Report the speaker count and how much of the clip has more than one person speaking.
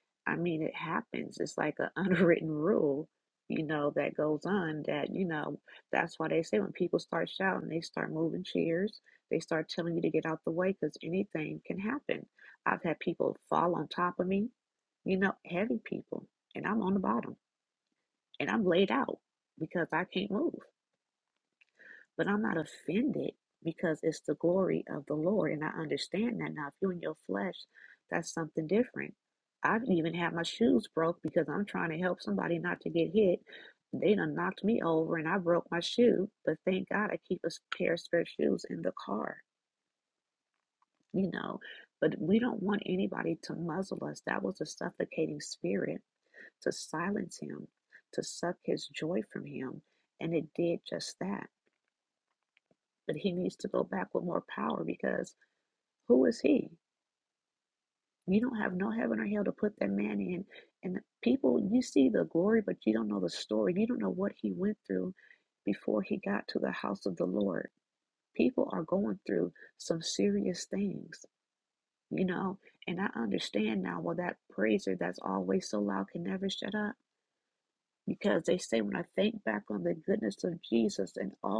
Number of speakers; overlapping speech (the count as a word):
one, no overlap